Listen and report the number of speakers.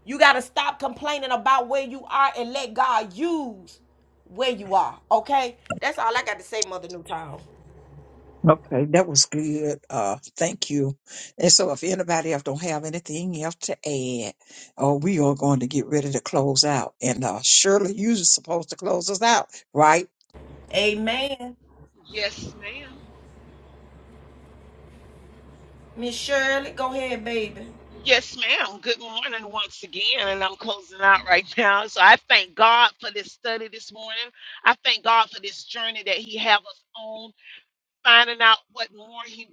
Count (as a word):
three